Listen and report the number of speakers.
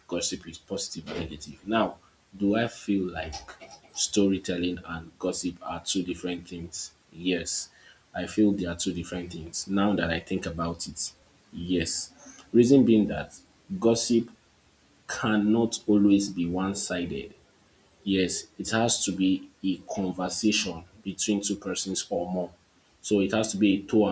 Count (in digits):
1